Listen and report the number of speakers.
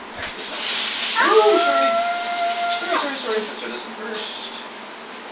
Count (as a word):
two